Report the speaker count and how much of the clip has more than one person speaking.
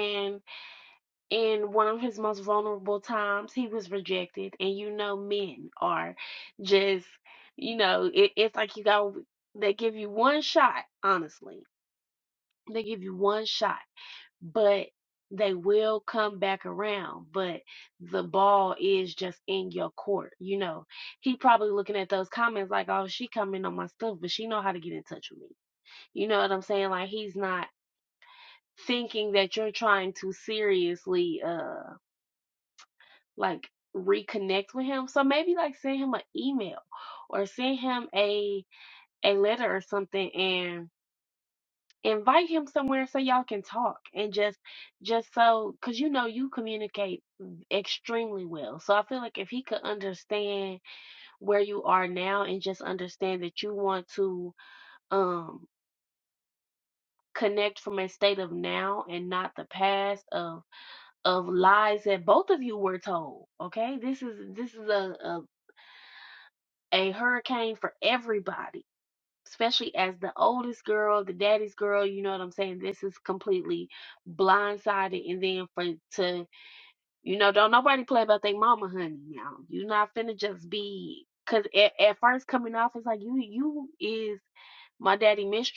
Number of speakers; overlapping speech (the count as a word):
one, no overlap